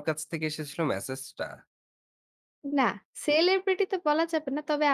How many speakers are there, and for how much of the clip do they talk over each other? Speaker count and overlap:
2, no overlap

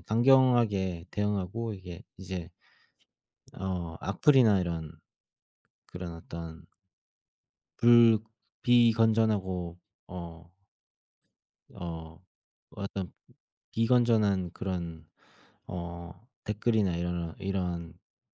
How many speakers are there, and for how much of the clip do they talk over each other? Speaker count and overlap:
1, no overlap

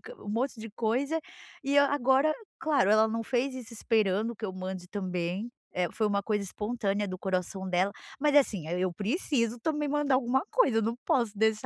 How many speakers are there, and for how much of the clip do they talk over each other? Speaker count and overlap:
1, no overlap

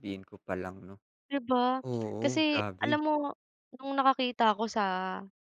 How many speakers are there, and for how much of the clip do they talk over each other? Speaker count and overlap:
2, about 13%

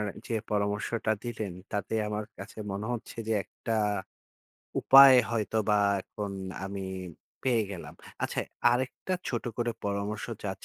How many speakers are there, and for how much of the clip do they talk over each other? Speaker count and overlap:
1, no overlap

